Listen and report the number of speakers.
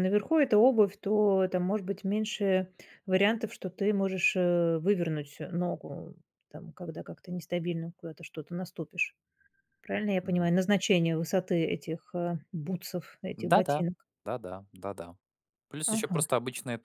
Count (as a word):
two